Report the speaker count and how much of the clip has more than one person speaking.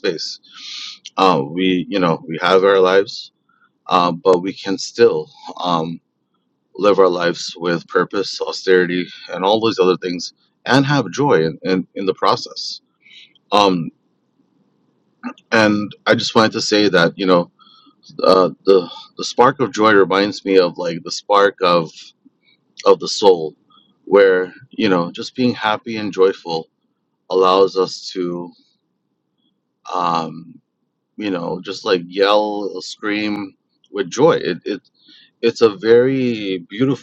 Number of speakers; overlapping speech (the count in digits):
1, no overlap